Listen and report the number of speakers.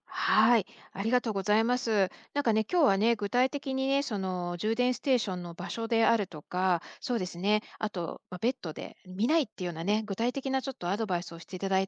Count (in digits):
1